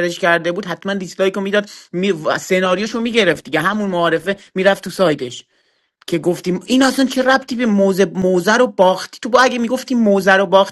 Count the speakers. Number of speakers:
one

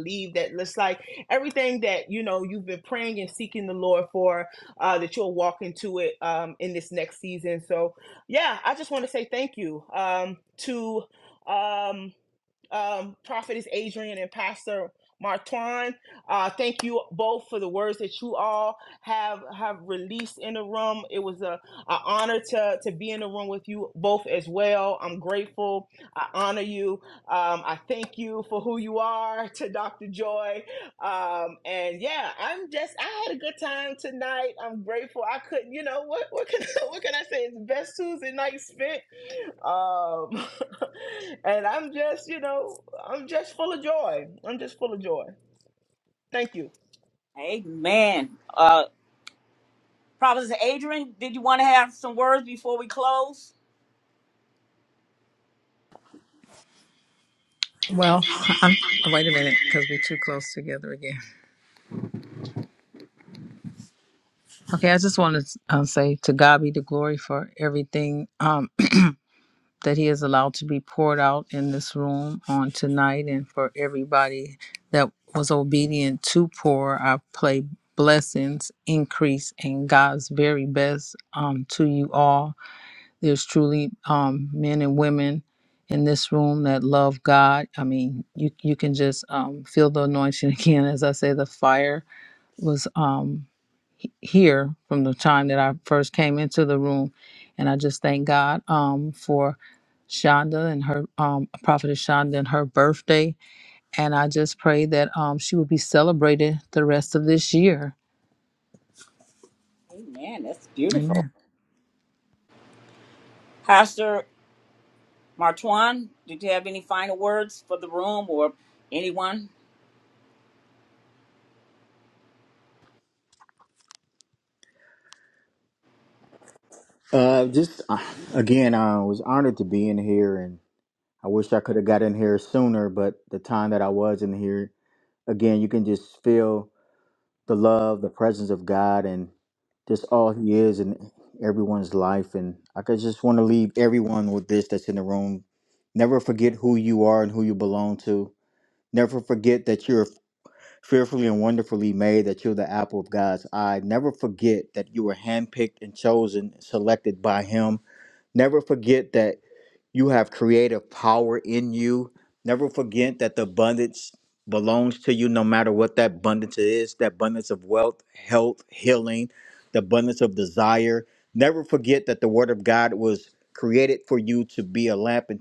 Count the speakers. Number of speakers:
four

